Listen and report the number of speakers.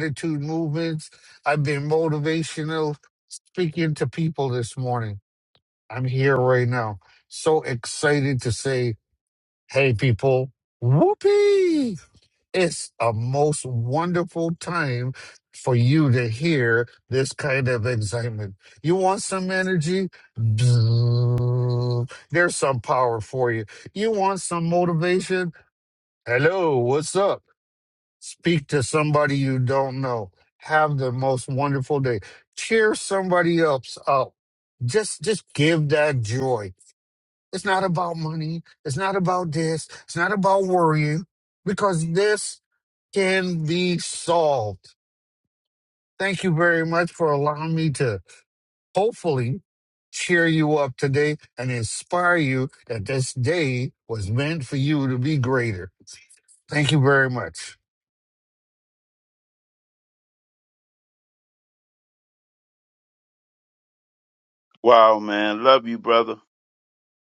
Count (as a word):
two